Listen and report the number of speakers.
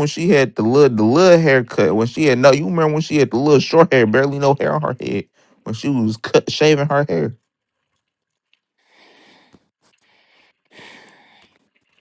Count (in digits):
1